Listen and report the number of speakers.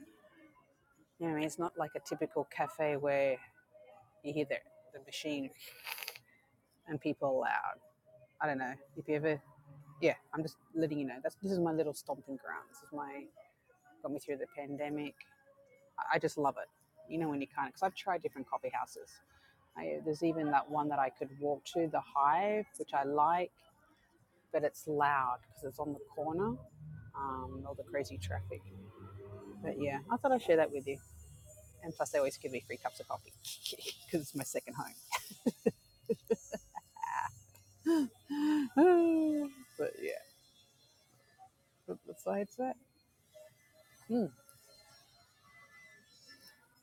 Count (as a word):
one